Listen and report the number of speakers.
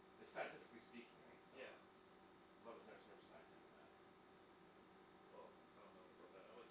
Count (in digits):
2